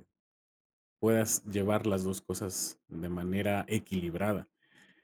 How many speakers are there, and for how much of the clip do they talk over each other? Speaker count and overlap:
1, no overlap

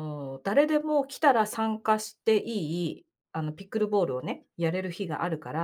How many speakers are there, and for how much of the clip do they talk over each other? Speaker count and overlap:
1, no overlap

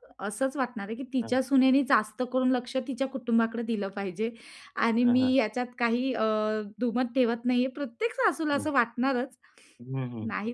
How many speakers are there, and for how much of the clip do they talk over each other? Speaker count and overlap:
2, about 6%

